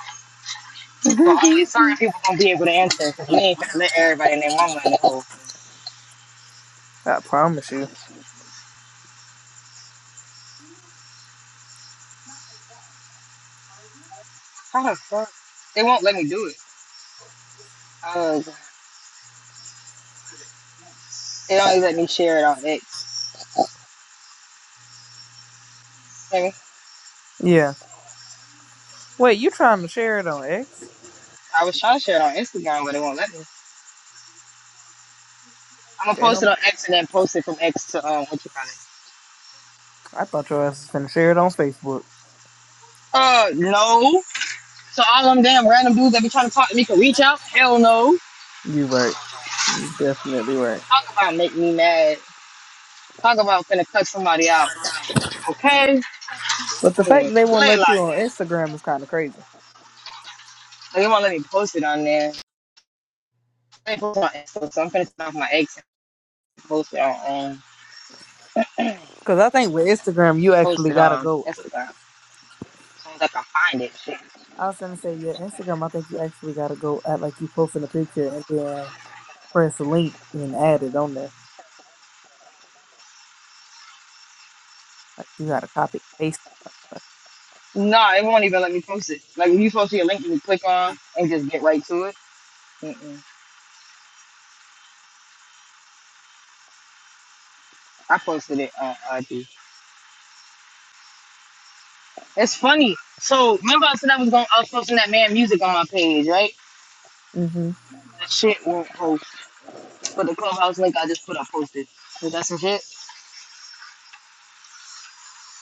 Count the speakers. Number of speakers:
2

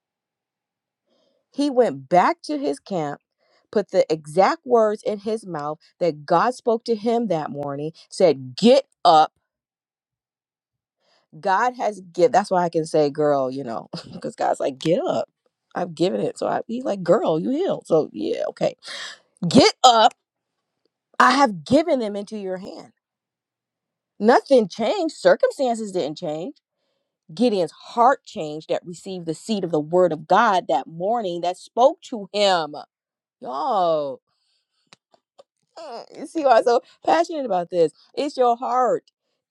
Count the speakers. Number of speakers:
1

